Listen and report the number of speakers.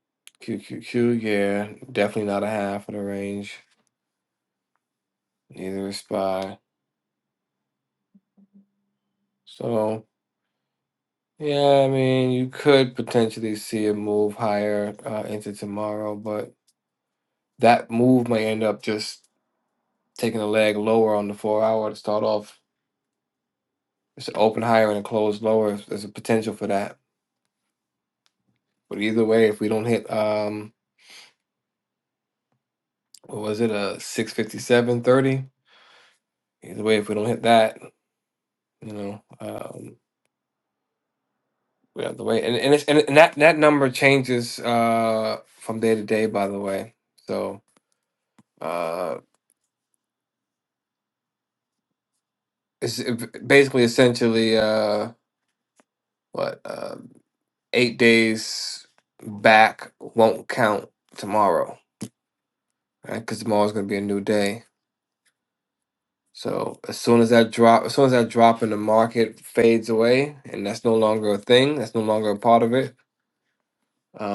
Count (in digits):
1